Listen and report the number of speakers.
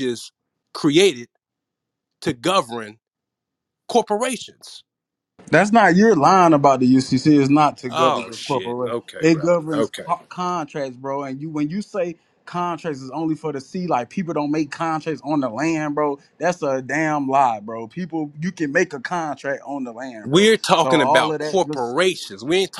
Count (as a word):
two